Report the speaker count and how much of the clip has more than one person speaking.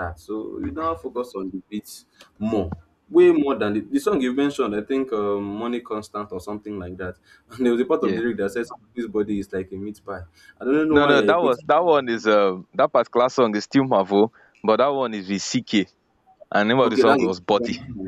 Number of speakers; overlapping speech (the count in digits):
2, about 10%